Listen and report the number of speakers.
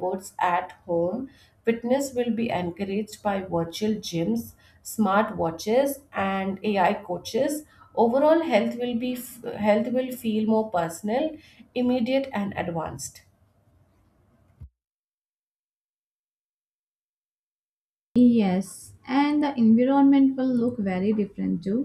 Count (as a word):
two